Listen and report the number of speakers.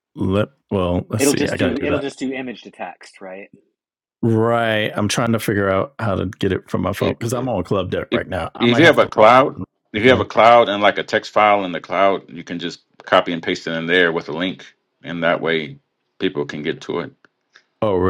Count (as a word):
three